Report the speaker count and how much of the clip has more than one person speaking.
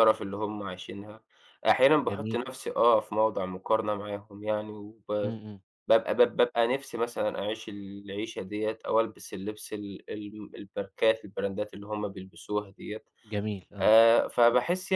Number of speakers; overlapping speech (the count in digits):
2, about 4%